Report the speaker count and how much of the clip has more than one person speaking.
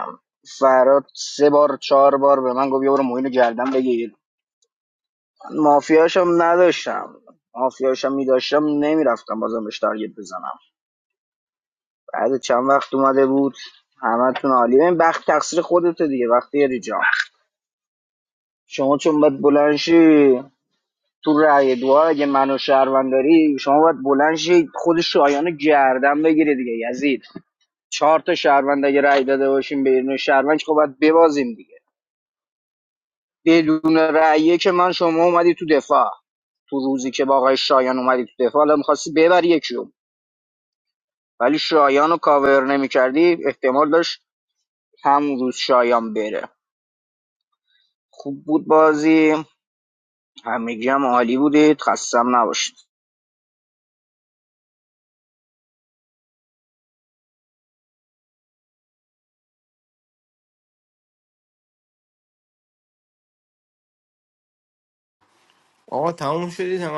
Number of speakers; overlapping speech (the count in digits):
2, no overlap